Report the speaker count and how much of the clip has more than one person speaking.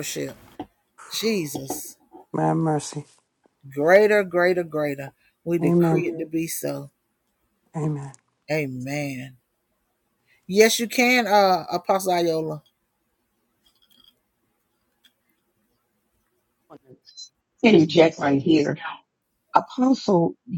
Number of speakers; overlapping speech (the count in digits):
3, about 2%